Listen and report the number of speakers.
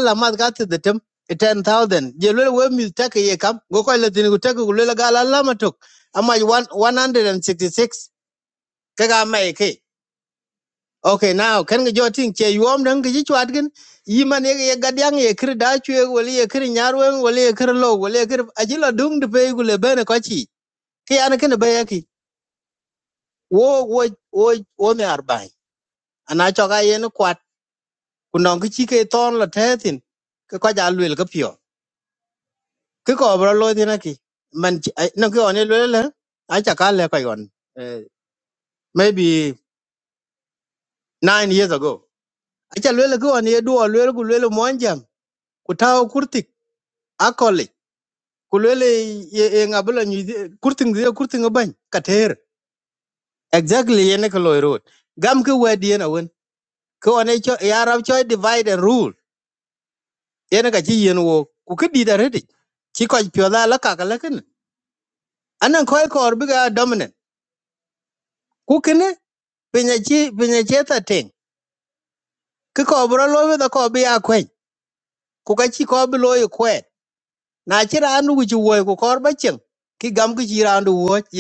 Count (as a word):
one